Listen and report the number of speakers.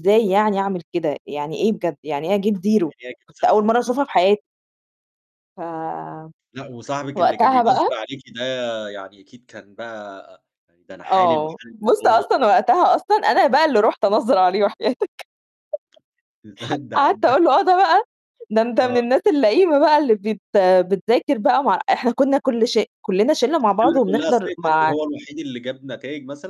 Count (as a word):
two